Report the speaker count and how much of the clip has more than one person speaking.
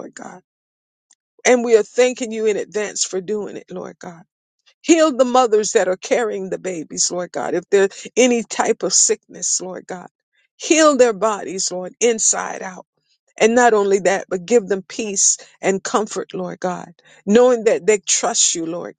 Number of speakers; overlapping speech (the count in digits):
1, no overlap